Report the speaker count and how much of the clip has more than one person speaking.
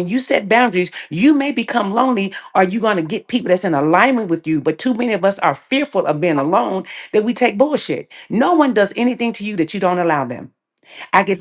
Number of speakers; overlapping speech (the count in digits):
1, no overlap